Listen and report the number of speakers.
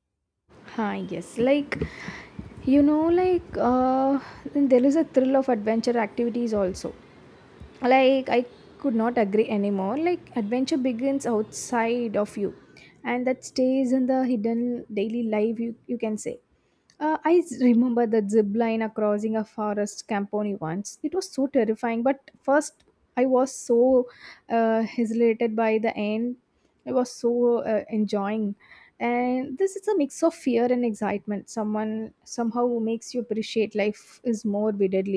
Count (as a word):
one